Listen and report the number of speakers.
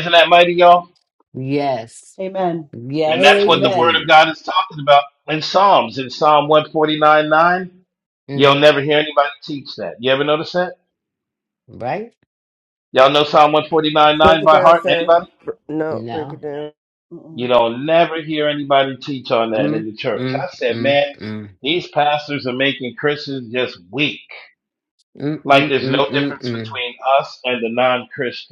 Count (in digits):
4